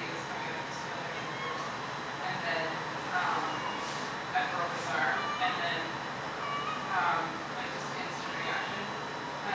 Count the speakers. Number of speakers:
one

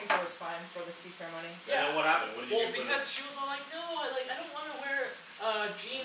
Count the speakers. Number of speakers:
three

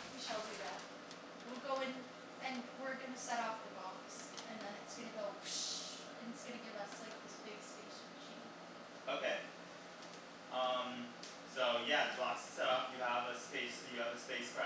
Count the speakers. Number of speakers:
two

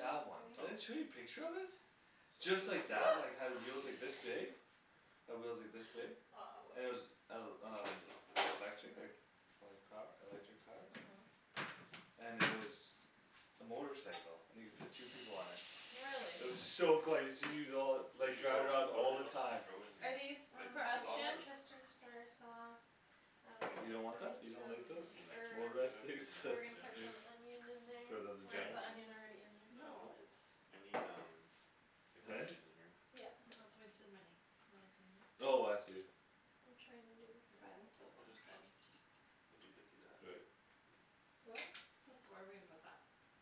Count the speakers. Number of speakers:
four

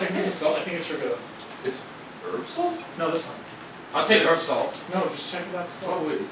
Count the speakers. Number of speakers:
three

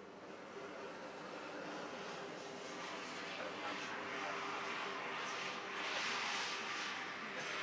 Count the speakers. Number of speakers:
two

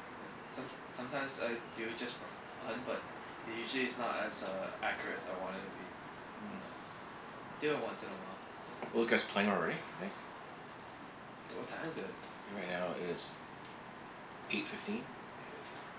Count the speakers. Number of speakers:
two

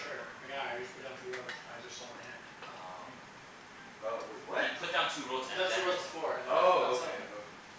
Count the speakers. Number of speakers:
three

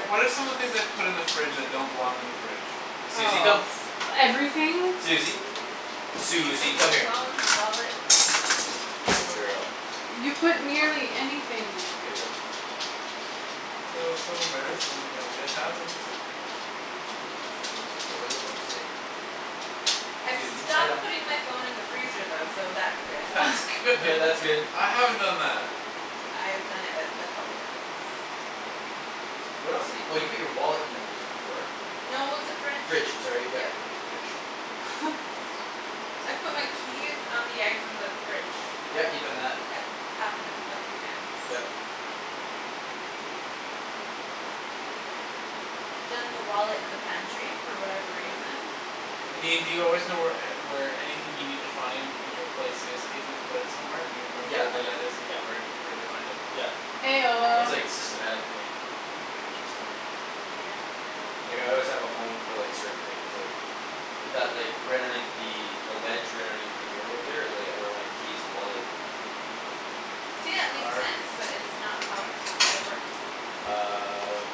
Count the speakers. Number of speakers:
four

